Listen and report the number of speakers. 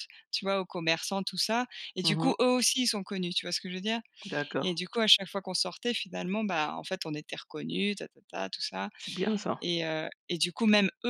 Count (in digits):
2